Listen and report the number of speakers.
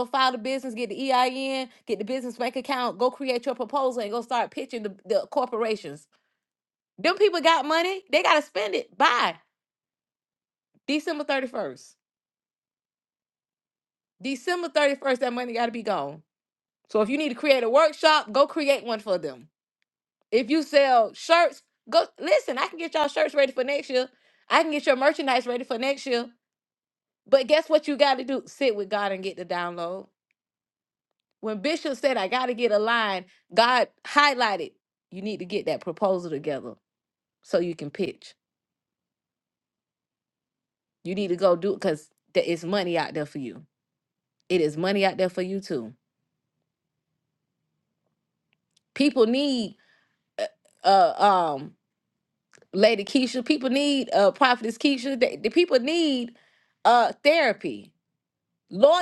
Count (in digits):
1